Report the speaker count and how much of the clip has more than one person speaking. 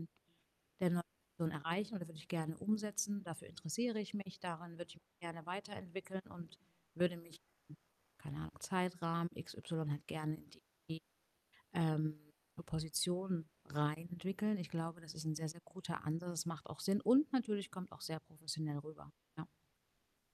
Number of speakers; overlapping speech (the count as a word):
one, no overlap